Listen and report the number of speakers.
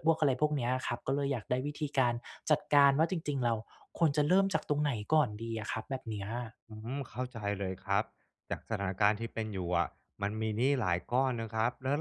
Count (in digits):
2